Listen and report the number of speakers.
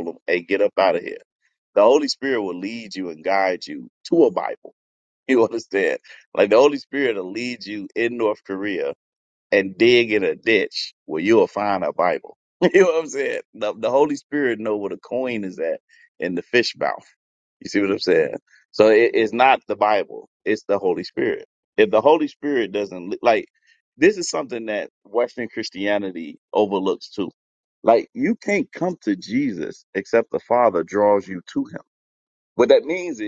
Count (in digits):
1